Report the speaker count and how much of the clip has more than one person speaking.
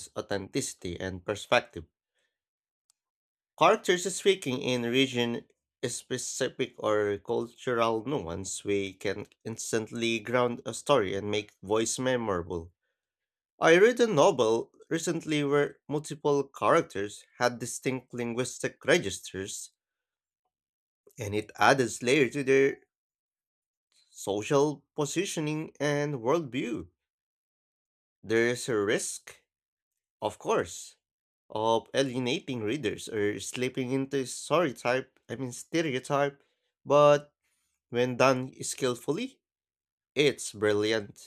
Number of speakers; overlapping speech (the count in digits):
1, no overlap